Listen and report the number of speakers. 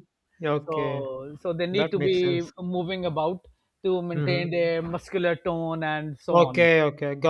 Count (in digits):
2